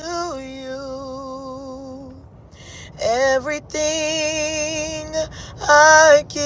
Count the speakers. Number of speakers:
1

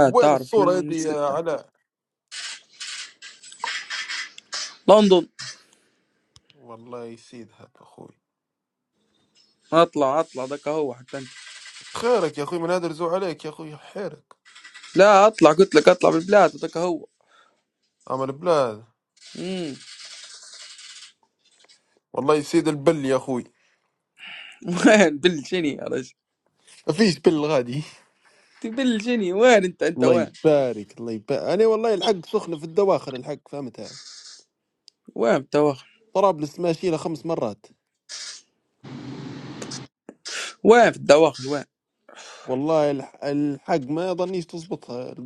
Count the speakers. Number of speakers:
2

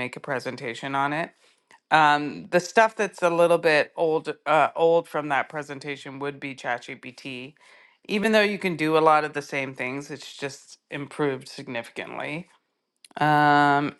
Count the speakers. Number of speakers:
1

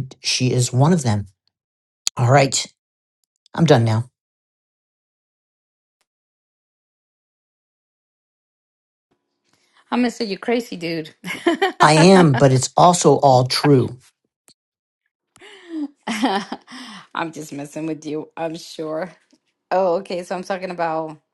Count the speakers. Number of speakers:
2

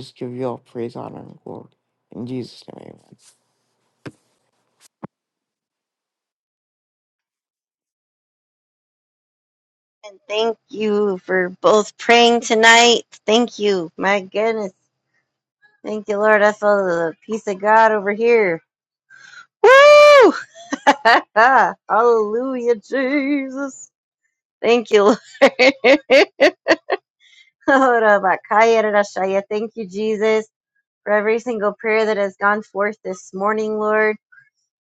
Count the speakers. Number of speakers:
2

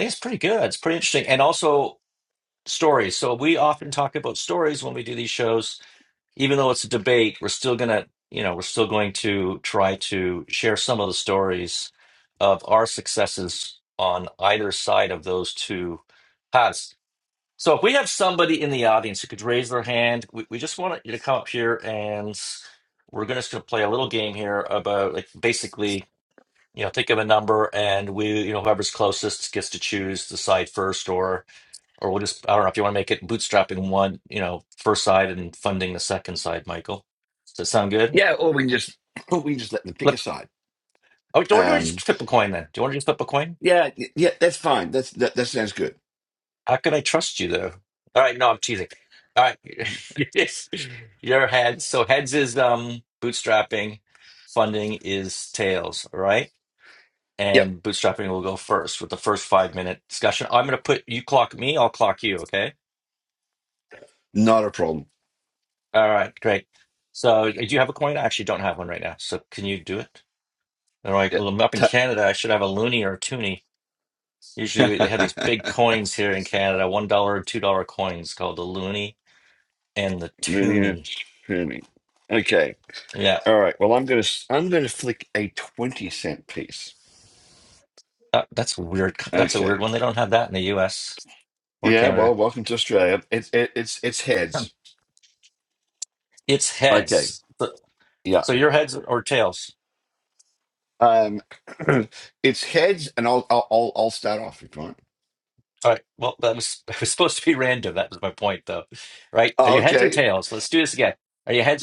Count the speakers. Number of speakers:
2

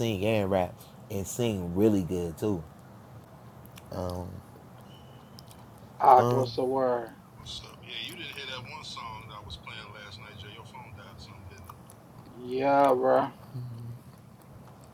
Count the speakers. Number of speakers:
3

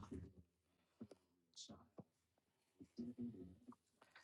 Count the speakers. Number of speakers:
0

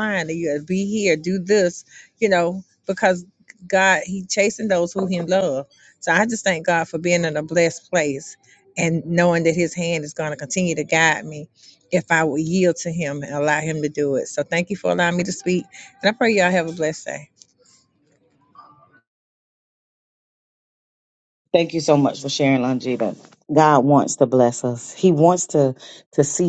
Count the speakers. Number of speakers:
2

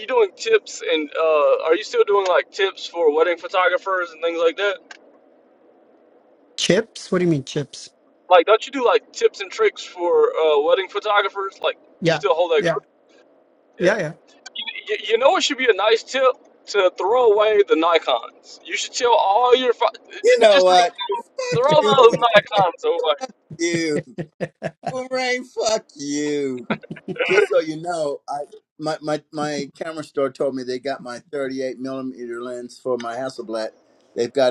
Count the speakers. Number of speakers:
3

